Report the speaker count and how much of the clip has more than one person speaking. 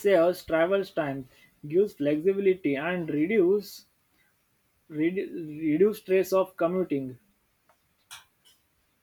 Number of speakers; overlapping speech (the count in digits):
1, no overlap